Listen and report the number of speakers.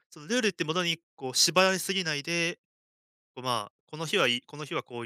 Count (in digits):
1